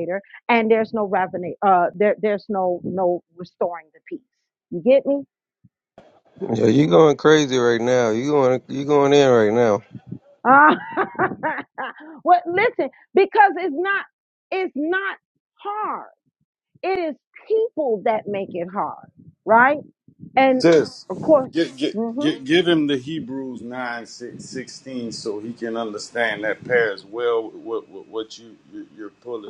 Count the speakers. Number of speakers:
3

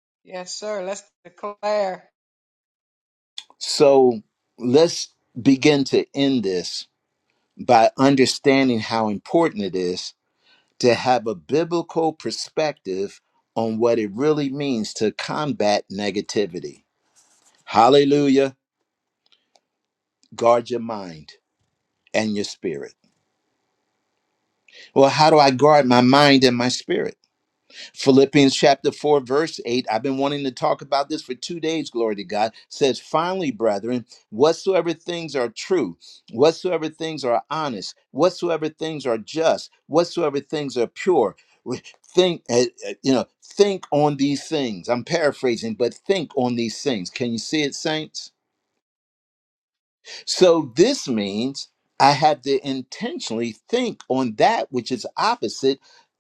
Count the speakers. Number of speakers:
2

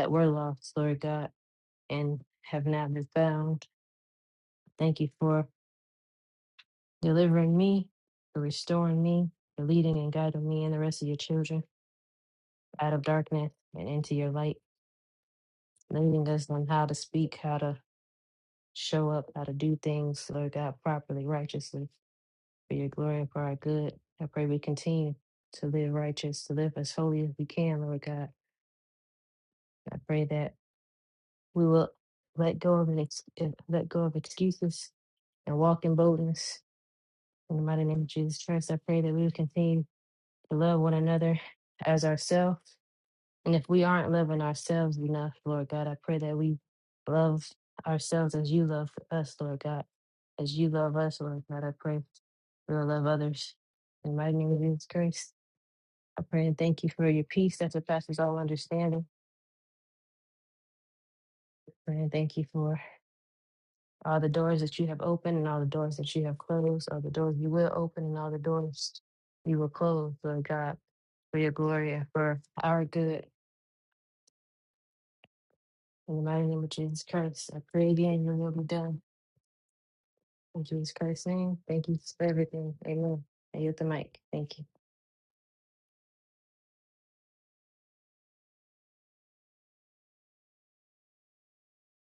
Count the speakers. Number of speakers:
1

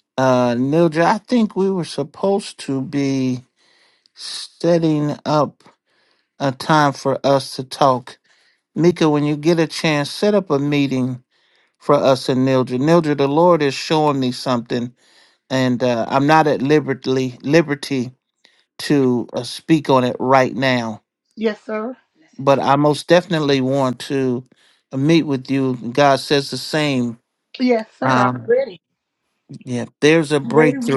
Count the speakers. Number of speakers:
2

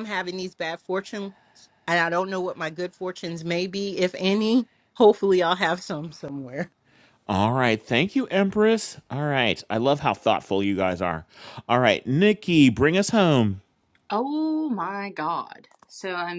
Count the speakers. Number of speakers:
3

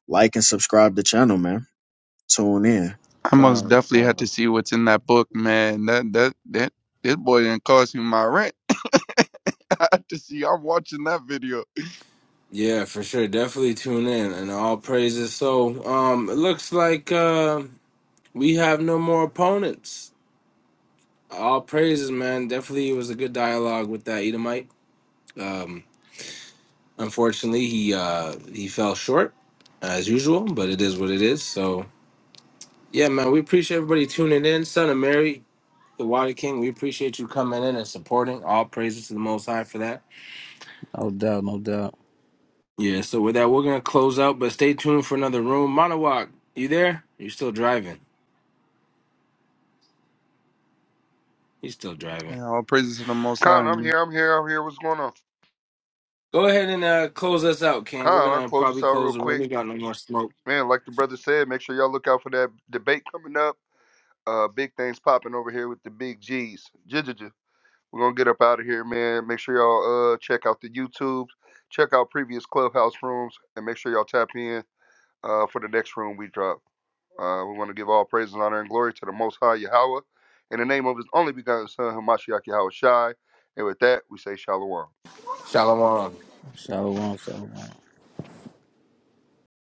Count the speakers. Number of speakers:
5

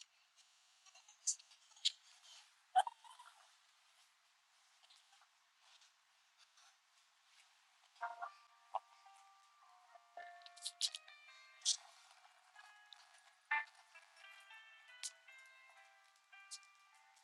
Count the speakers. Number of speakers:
0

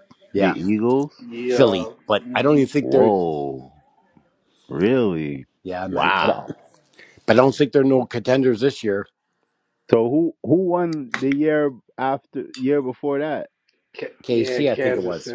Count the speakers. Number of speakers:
3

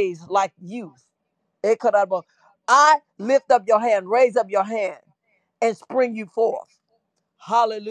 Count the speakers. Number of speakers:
1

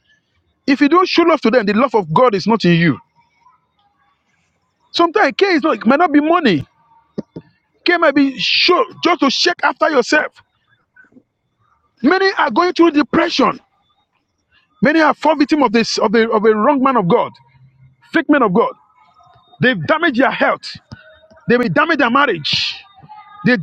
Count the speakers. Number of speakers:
1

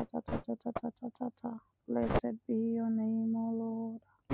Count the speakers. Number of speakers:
1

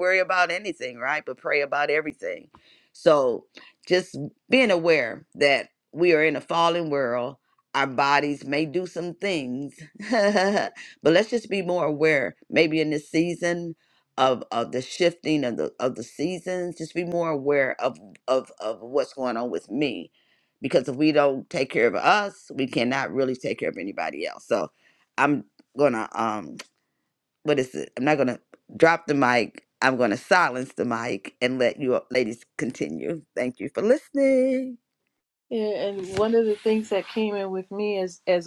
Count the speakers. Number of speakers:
2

